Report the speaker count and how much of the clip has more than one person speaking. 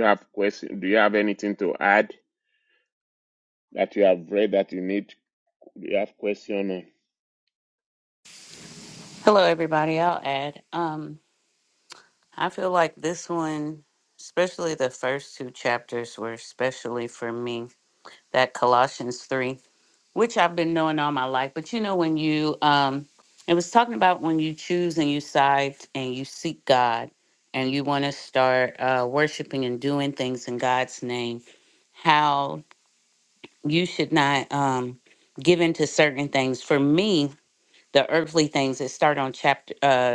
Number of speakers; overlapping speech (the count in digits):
2, no overlap